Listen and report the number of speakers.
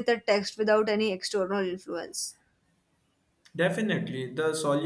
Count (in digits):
2